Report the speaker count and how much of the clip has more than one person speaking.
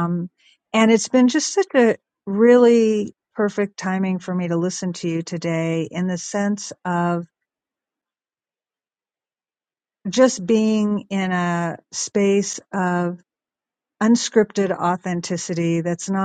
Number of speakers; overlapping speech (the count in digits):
1, no overlap